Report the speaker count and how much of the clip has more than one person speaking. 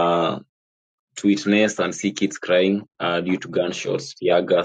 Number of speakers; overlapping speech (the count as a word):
one, no overlap